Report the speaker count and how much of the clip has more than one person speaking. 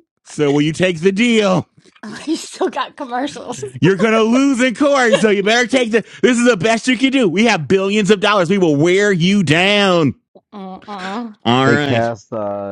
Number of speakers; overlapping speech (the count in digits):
3, about 4%